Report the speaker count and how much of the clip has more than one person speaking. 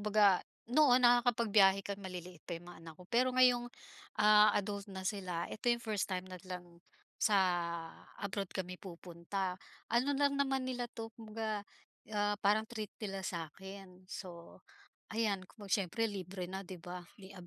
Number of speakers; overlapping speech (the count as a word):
one, no overlap